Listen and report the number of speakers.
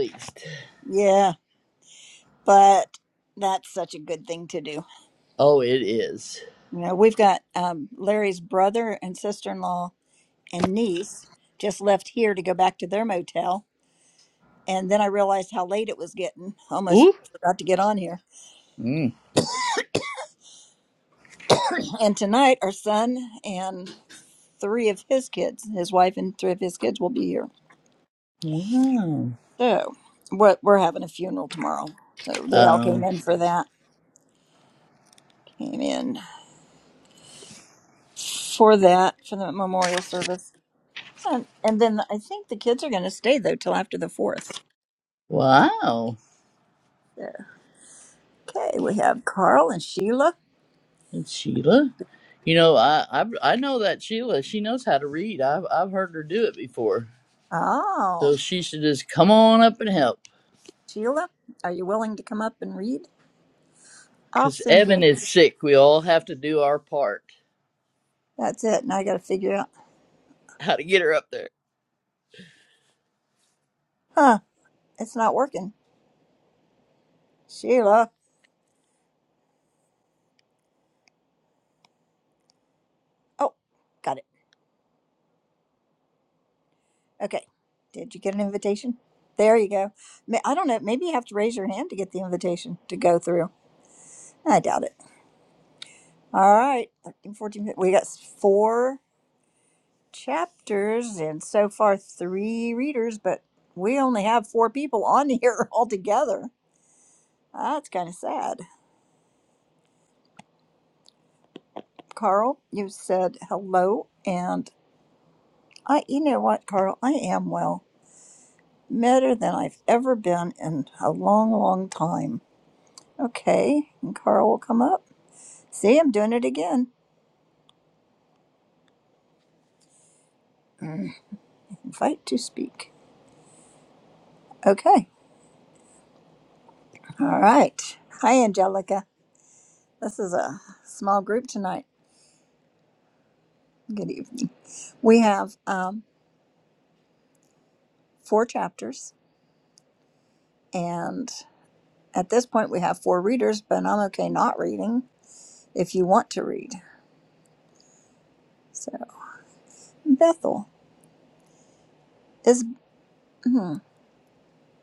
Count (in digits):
2